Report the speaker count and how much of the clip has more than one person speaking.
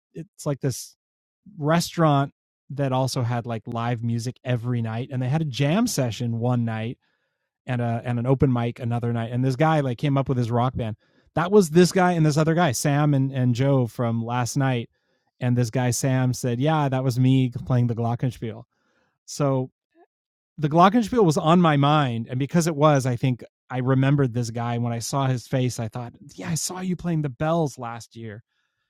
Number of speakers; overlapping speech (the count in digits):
1, no overlap